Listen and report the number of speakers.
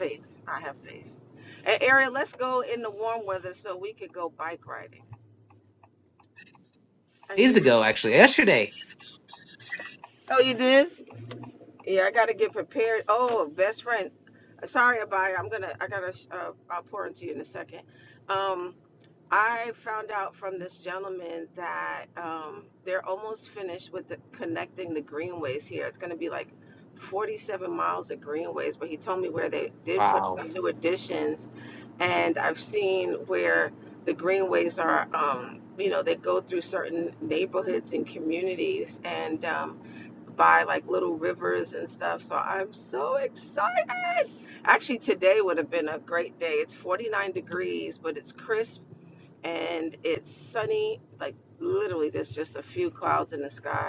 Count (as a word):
two